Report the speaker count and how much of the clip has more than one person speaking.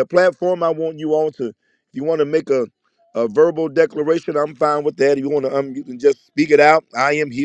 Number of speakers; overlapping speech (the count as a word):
one, no overlap